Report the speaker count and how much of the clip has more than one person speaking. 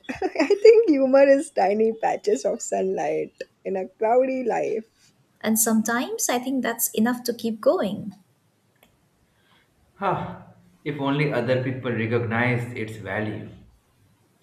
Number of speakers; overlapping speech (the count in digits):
3, no overlap